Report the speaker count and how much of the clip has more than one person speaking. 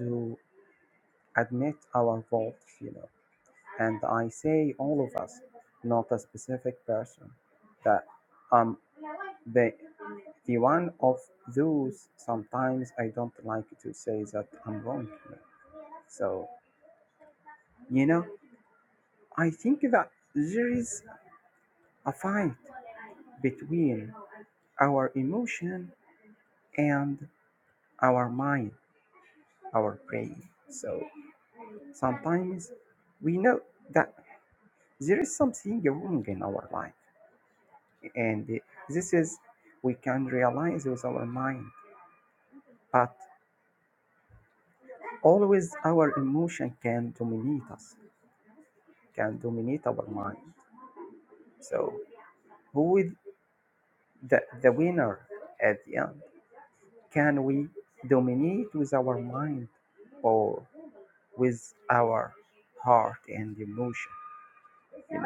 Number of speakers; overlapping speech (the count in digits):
1, no overlap